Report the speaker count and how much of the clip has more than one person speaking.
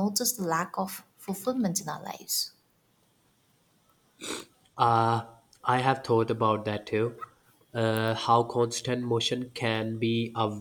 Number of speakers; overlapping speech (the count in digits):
2, no overlap